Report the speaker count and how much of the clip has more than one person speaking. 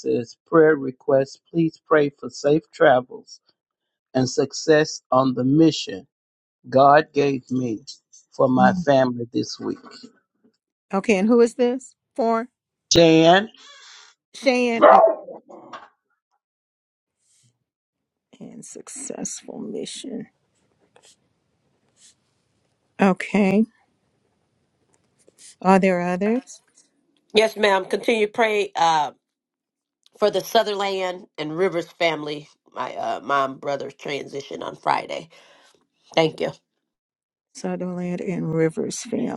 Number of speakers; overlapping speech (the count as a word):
three, no overlap